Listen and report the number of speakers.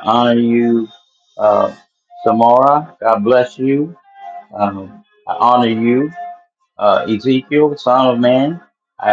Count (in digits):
1